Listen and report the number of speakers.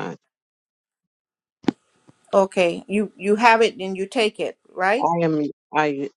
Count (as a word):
two